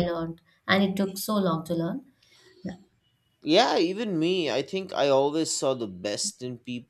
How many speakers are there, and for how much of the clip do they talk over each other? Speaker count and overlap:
two, no overlap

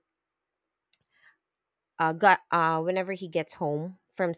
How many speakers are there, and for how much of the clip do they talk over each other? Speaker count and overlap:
one, no overlap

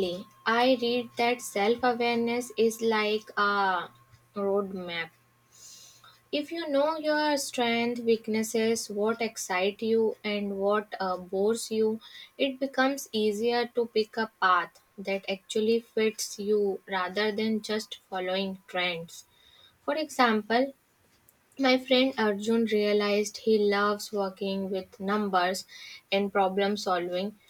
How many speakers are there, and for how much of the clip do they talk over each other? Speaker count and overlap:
one, no overlap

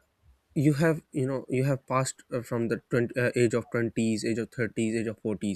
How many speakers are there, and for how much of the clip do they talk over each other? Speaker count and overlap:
one, no overlap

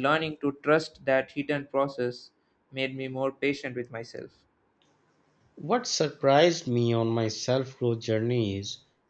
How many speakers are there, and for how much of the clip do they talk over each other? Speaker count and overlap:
two, no overlap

